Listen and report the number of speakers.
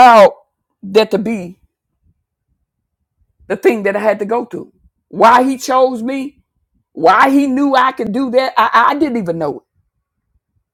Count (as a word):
one